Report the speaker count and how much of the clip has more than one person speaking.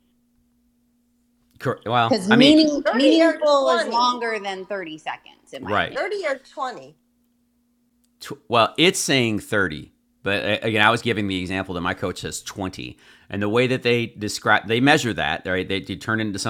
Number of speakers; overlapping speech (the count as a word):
three, about 11%